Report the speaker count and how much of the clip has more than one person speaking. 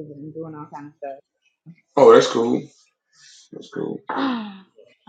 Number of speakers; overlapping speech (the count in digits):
2, no overlap